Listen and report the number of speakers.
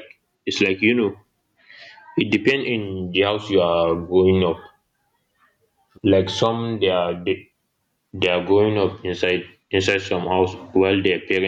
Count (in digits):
1